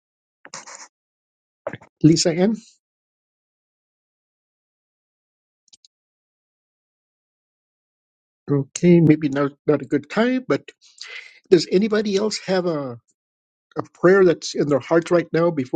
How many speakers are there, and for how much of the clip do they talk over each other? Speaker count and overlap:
1, no overlap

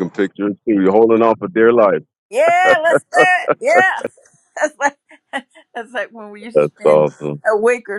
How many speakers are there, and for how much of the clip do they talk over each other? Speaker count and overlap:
2, about 7%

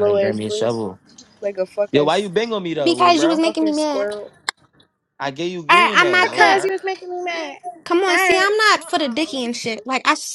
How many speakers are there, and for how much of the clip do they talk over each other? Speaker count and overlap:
3, about 36%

